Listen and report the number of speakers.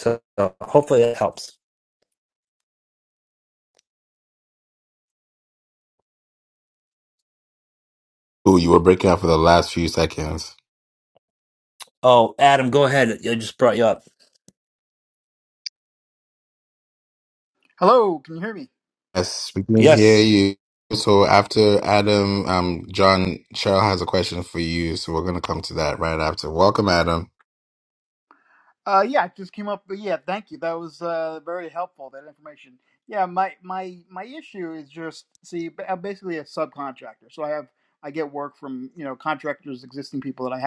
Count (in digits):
3